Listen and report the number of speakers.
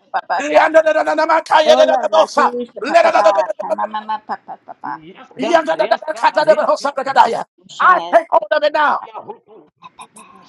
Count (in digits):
3